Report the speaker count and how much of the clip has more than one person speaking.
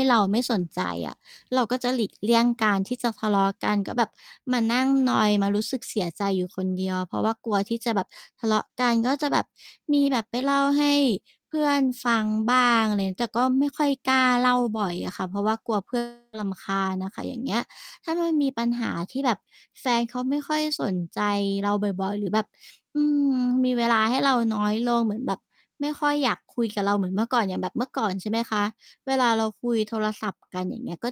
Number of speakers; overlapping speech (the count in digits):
1, no overlap